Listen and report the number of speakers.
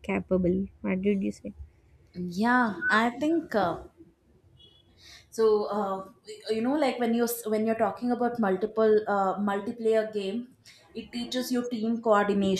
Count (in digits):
2